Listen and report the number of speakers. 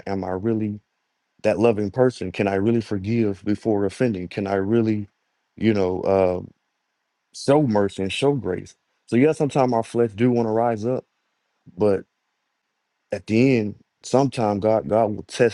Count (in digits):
1